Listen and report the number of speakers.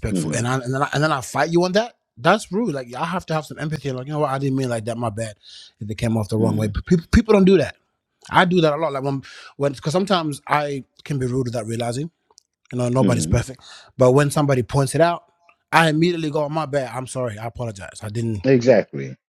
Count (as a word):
two